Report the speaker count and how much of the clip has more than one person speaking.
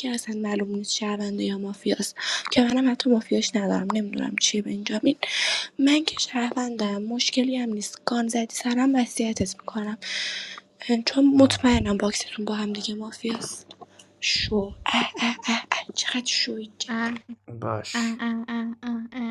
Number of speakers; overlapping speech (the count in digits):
3, about 3%